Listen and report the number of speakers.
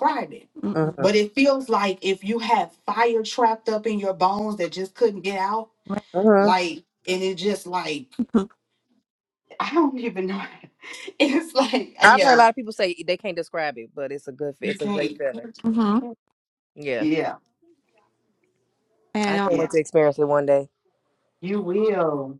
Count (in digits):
3